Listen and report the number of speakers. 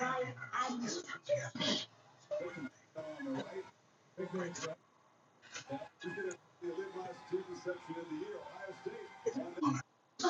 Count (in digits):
0